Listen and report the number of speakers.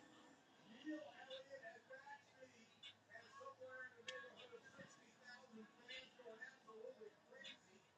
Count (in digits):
0